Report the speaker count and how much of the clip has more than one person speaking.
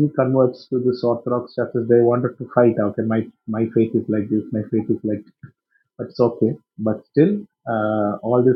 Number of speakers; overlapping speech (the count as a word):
one, no overlap